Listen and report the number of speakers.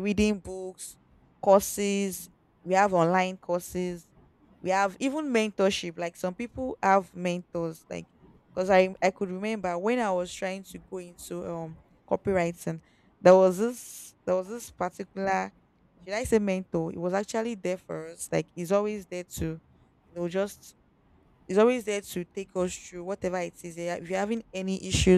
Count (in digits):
1